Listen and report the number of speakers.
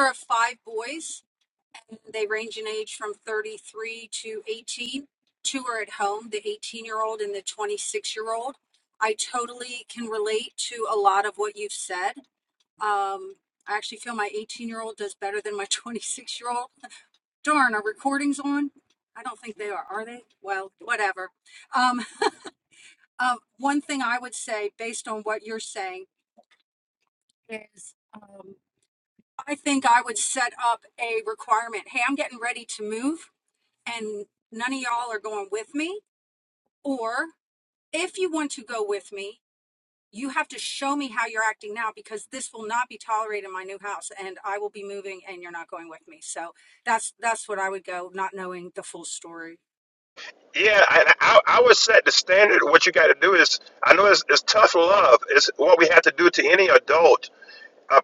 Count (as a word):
two